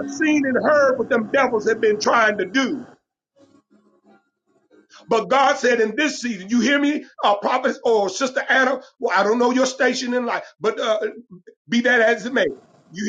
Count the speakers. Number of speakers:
1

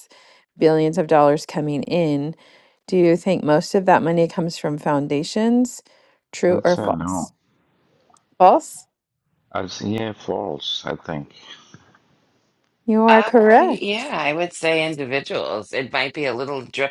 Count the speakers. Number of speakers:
3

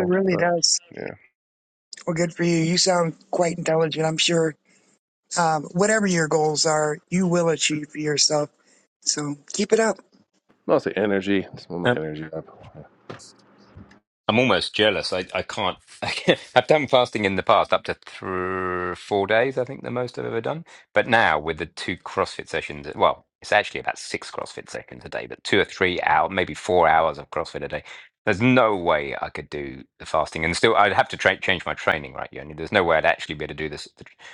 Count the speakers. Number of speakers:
3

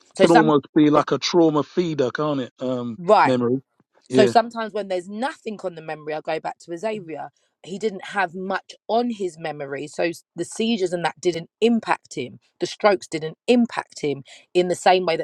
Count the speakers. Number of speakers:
2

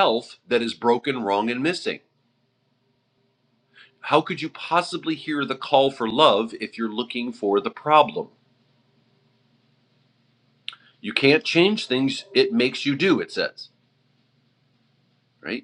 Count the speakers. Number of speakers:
1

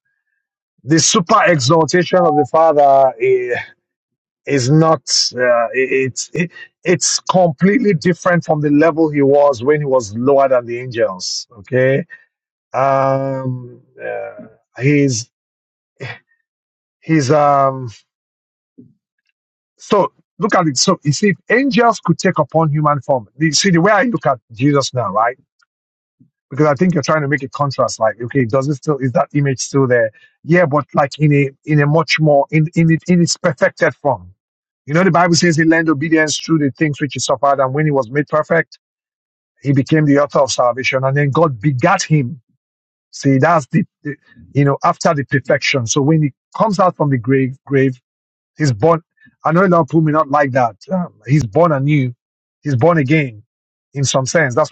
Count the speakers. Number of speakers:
1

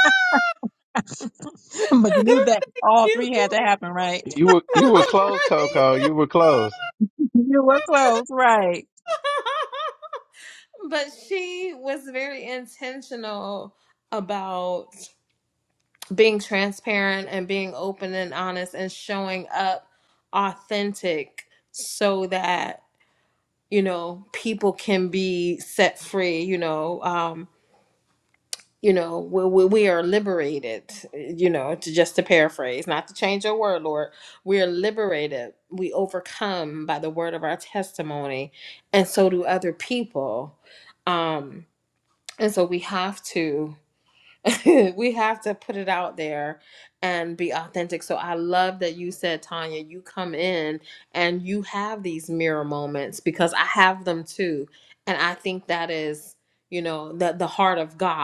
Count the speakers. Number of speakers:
3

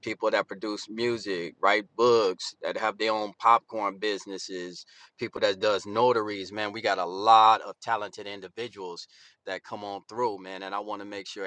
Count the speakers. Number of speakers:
1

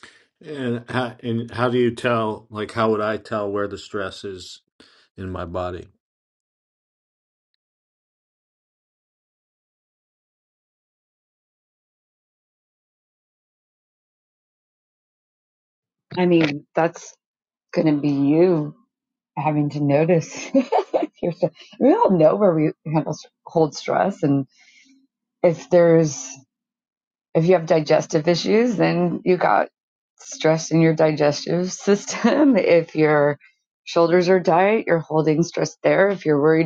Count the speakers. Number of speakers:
2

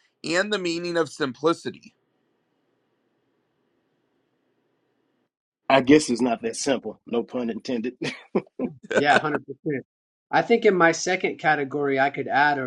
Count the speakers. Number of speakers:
3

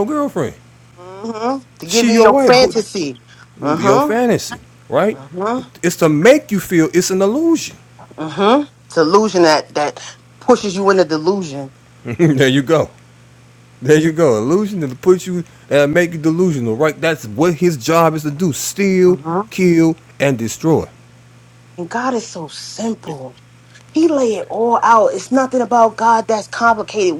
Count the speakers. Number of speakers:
2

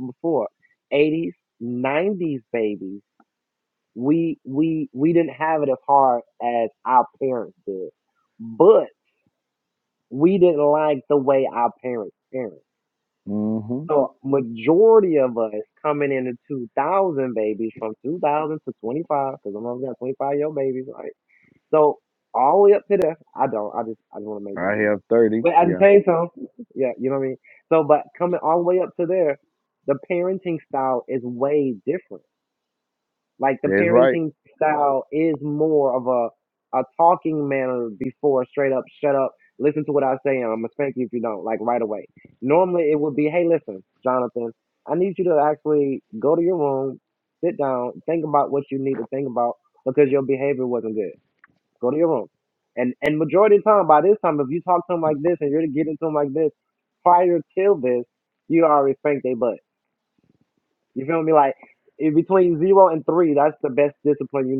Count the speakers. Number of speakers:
2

